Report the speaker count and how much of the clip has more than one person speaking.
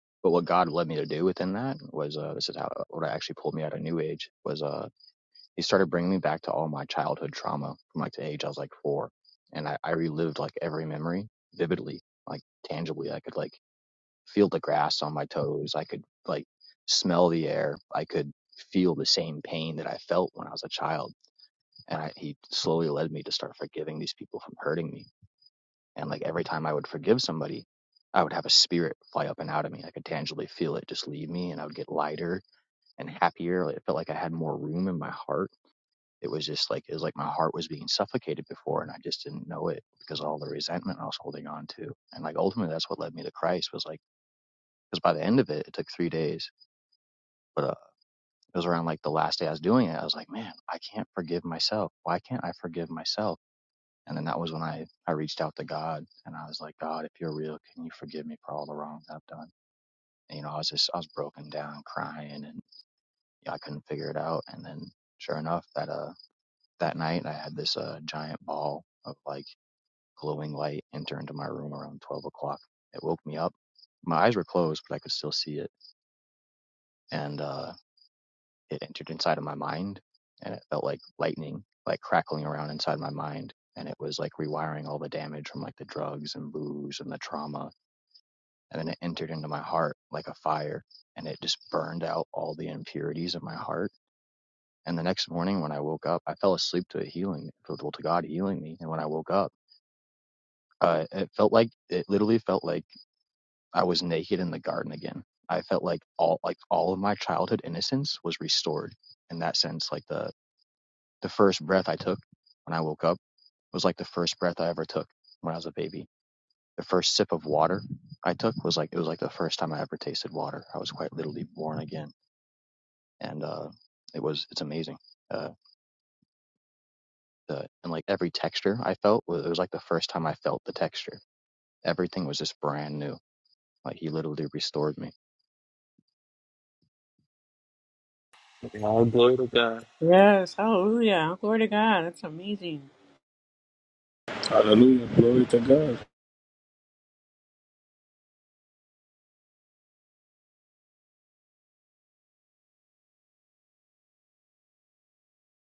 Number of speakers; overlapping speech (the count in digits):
4, no overlap